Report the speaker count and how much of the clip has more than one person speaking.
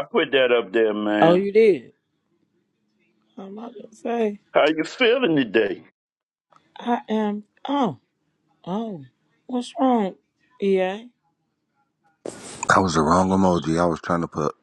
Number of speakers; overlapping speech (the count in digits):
3, about 1%